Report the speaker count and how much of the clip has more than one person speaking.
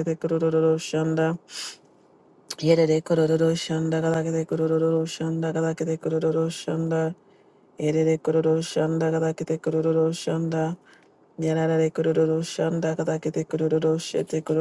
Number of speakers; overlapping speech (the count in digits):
1, no overlap